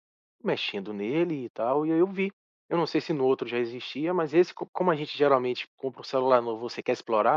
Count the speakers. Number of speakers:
1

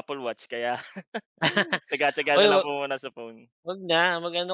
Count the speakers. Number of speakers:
2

